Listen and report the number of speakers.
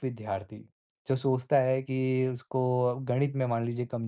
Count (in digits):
1